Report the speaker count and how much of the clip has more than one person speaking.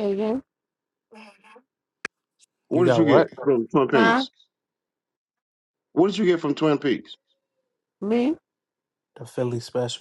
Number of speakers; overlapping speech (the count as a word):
three, about 9%